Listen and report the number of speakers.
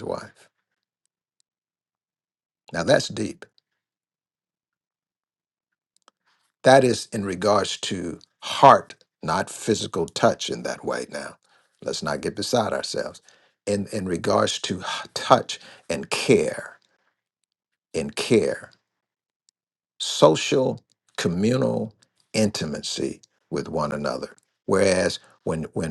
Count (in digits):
1